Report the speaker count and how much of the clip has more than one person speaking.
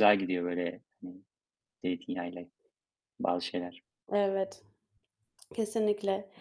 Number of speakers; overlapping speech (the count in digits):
2, no overlap